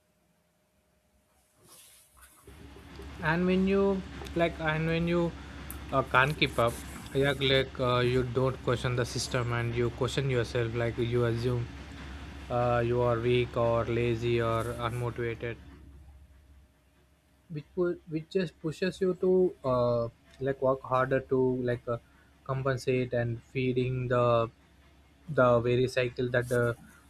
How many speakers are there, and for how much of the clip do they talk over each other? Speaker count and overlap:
one, no overlap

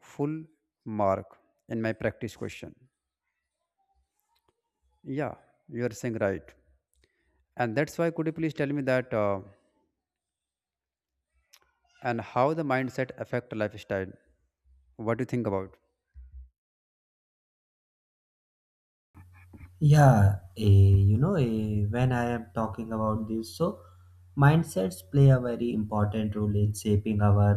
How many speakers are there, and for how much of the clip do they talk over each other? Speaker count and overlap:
two, no overlap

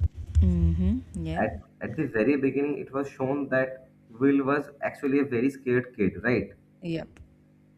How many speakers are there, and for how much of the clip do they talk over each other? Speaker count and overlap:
two, about 1%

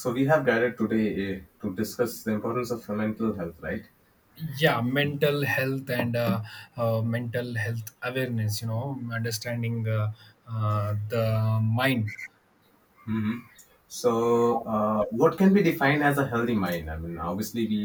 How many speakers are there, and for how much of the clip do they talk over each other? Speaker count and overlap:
two, no overlap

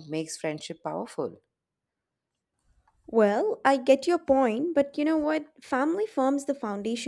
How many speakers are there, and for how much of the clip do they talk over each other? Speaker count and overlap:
two, no overlap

